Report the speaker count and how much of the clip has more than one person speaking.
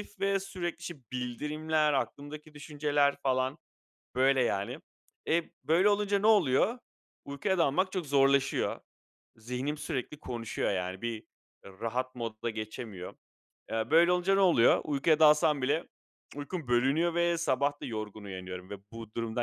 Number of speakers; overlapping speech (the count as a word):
one, no overlap